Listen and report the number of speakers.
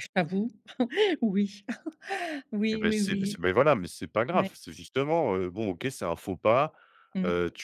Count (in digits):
2